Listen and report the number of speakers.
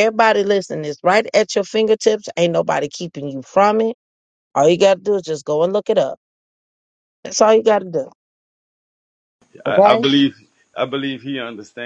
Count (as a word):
two